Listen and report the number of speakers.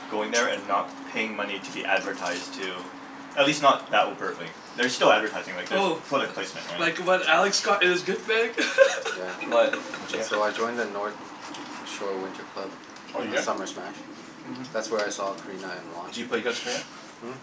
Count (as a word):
four